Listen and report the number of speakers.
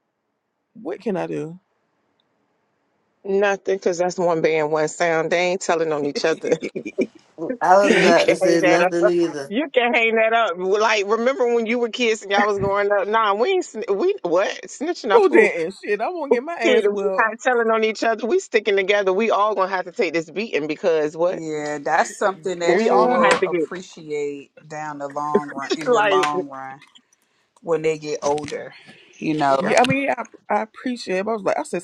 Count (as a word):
four